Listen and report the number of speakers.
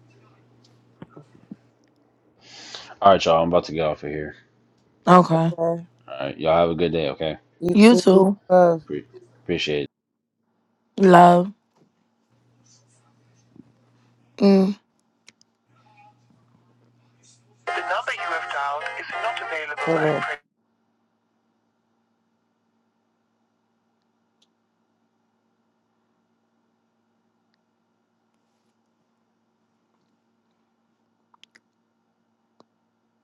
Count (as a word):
three